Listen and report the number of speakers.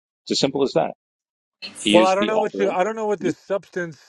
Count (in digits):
2